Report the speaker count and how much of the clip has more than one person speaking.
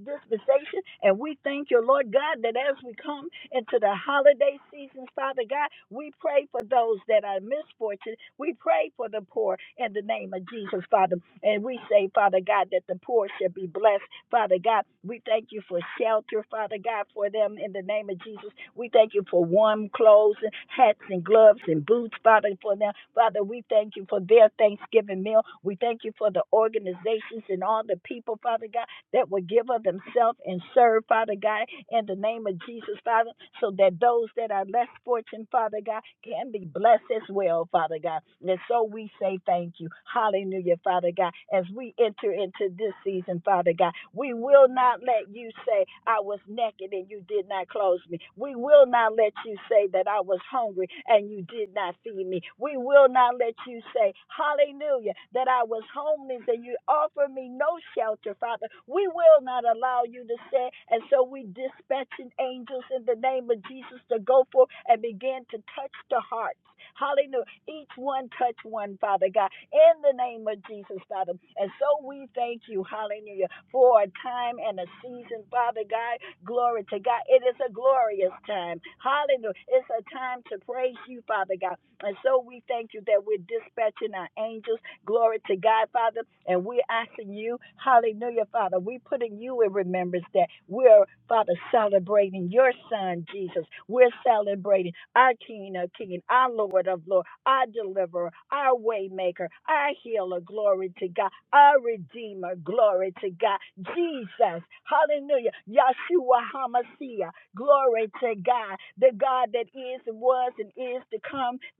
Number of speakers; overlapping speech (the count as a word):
one, no overlap